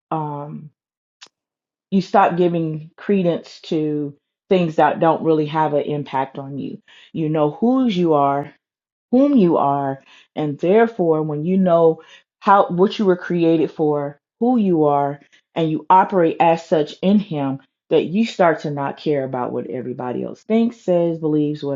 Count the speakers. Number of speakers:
1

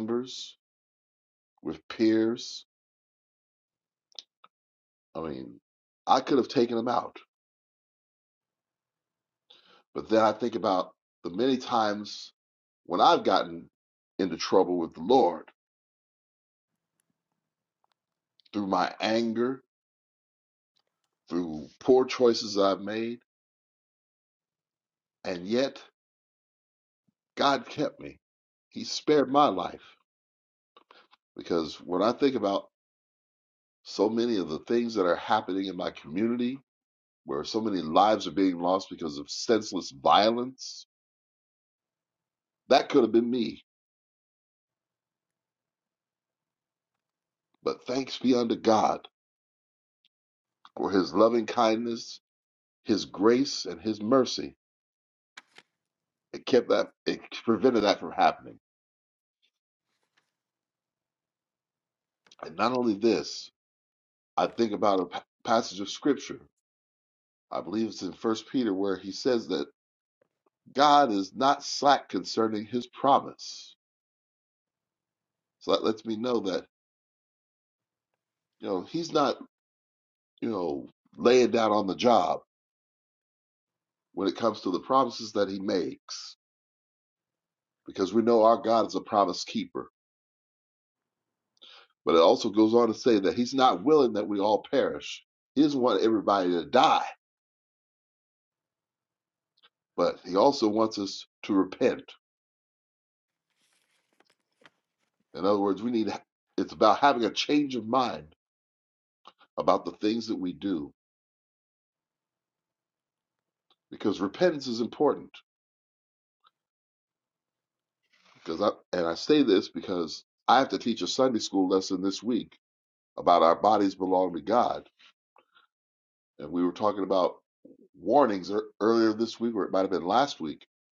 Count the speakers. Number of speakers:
1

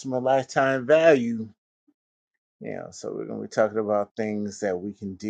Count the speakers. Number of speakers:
1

